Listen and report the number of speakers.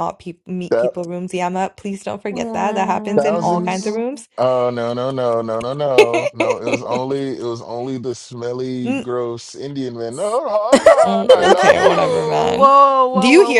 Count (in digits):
3